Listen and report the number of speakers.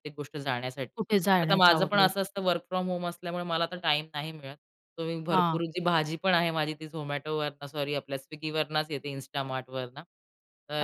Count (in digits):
2